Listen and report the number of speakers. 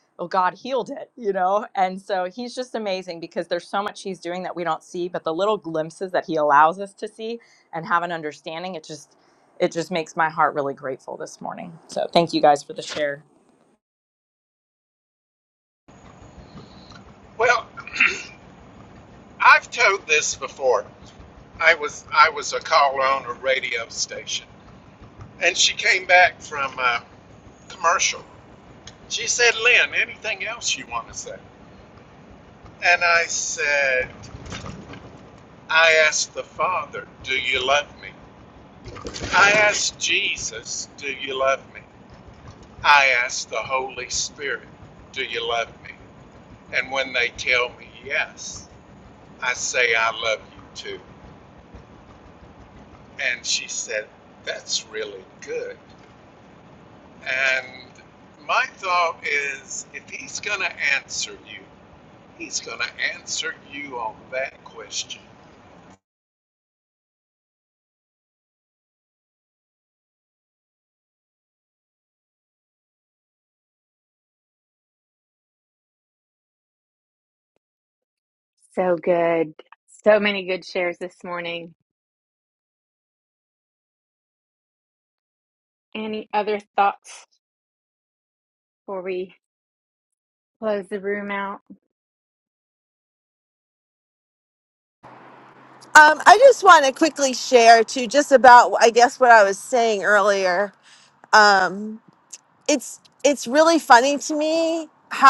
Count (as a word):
four